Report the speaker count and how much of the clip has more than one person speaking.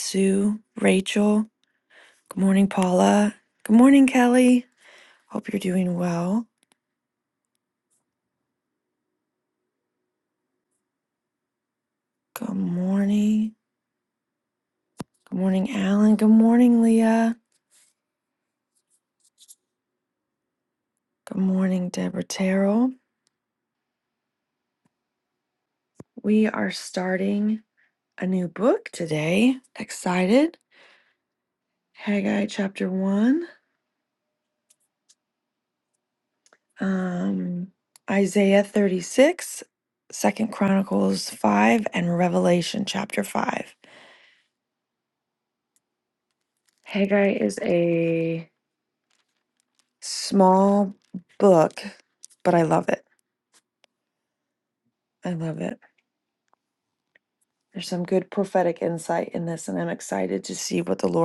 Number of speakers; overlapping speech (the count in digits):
1, no overlap